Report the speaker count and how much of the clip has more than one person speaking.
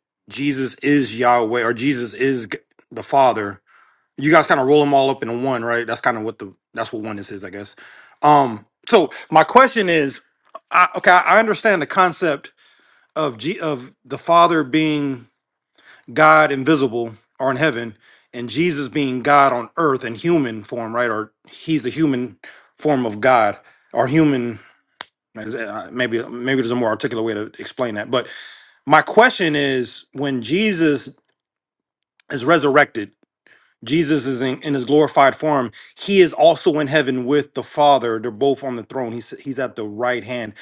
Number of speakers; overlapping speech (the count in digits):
1, no overlap